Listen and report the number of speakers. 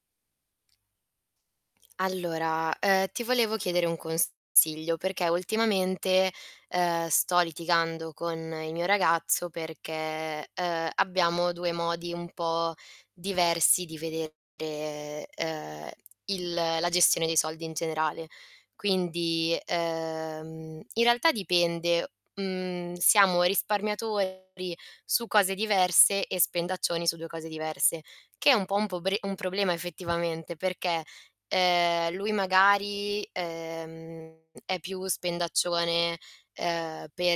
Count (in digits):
1